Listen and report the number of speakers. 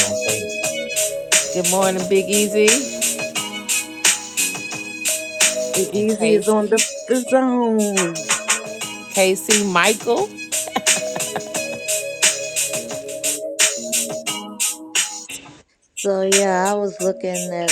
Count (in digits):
3